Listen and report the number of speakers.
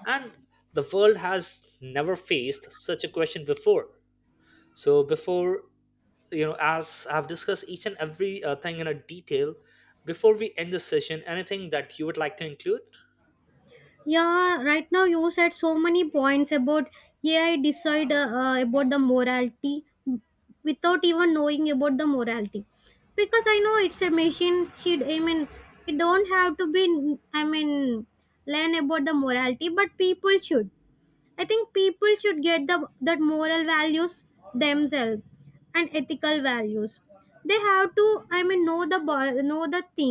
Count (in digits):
2